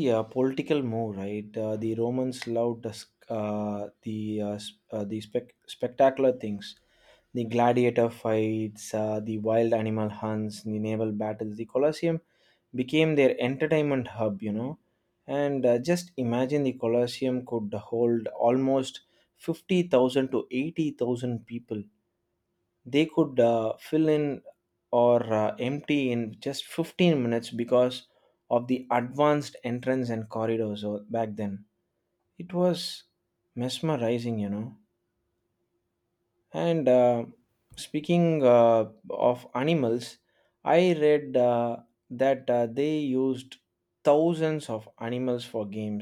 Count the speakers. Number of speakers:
1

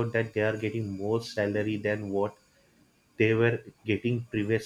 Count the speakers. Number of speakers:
1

